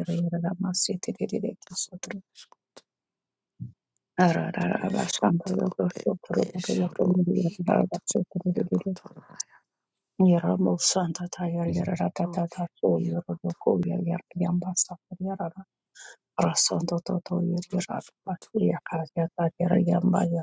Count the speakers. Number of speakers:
2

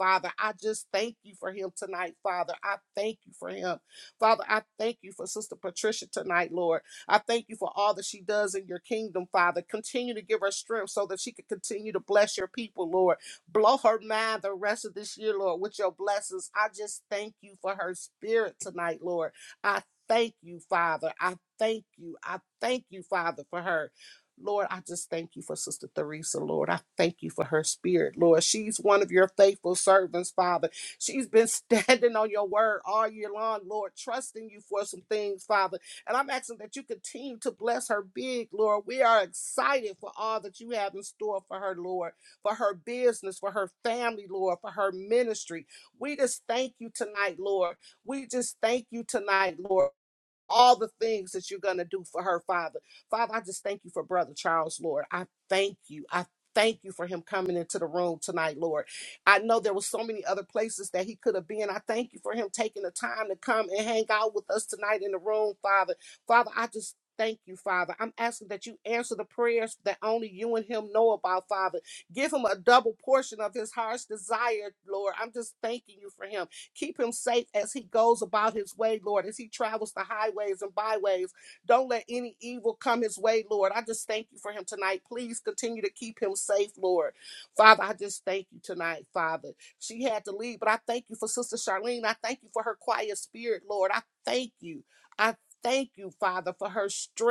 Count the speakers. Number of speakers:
1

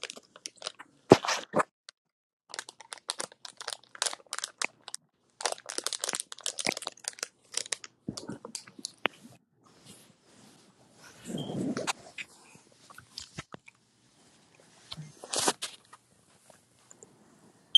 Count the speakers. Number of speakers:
0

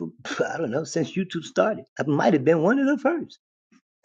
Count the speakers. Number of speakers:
1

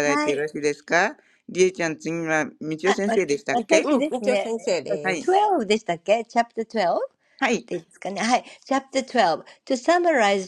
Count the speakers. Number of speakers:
3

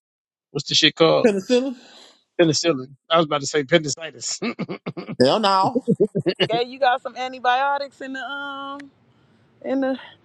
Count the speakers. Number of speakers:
3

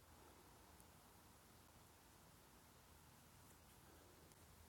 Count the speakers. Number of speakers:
0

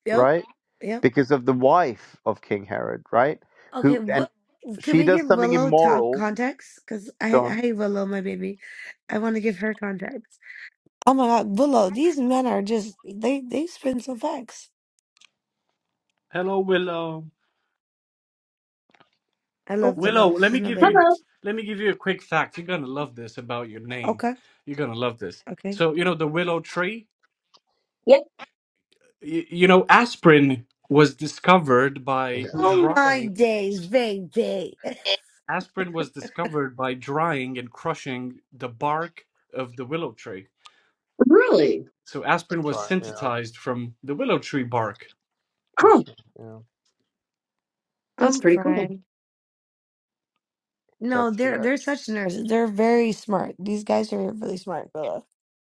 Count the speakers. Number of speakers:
4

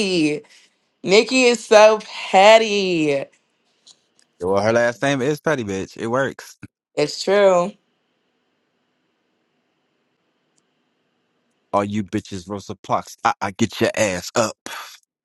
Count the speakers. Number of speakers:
2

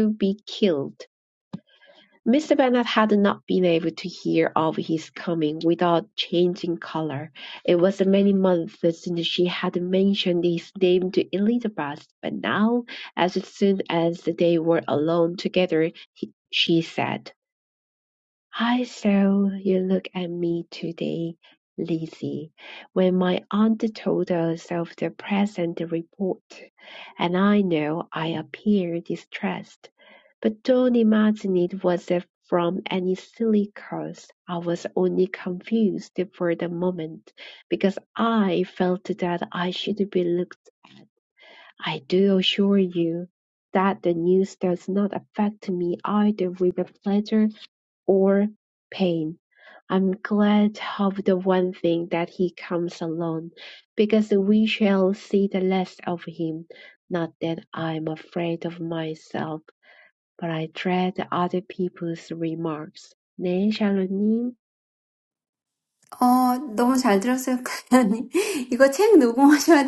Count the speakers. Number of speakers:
2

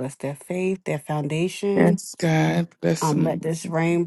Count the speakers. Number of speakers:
2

